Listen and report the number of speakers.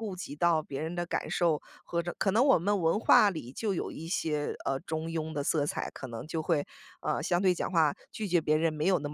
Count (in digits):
1